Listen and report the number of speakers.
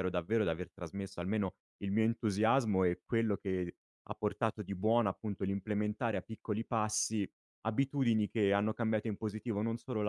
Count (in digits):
1